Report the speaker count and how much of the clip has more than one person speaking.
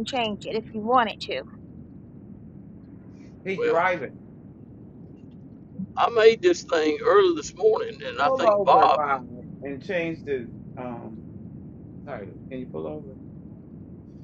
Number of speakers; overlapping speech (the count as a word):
three, about 7%